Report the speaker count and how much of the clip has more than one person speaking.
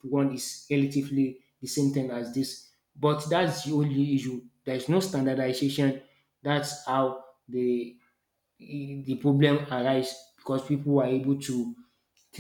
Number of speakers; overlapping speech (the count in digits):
1, no overlap